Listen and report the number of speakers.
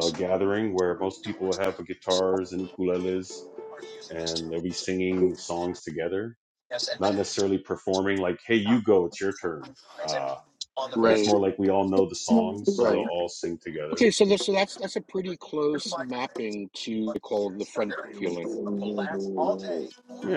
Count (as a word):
three